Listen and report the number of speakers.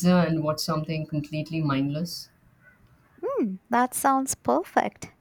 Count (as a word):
two